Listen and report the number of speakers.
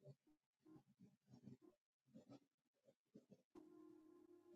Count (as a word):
zero